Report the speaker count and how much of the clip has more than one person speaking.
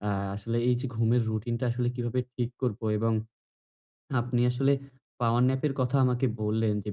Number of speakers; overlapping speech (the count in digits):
1, no overlap